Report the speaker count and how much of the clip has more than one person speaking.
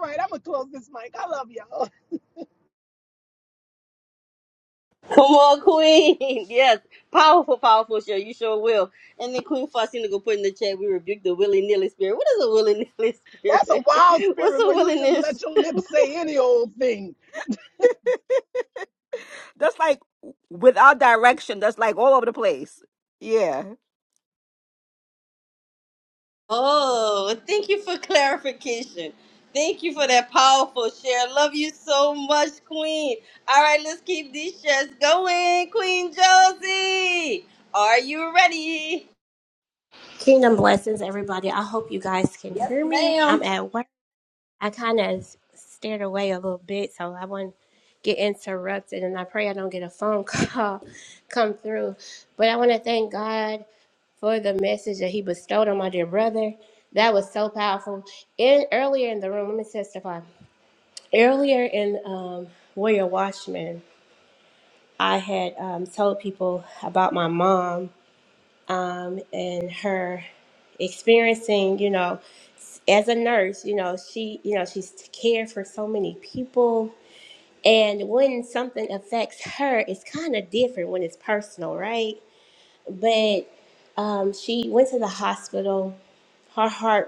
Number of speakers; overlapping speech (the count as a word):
four, about 2%